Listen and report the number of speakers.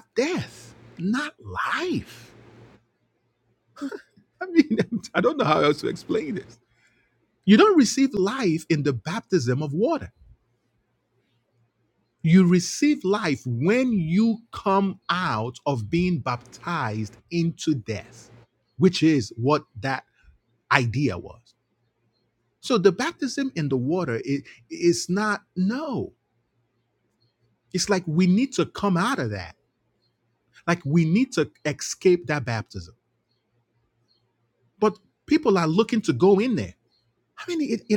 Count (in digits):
1